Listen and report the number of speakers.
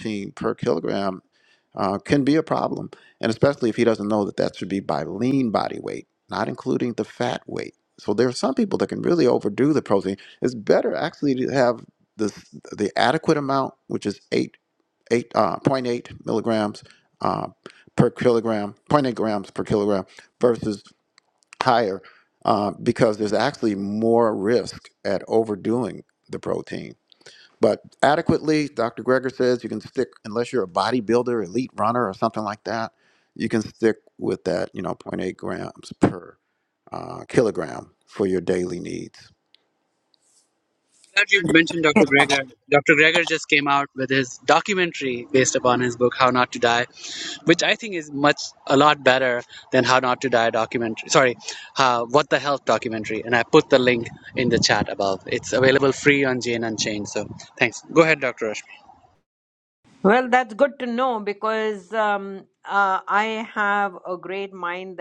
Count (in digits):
3